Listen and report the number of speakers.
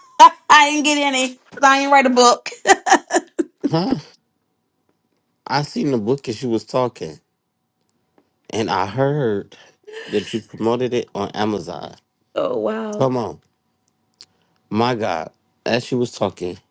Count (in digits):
2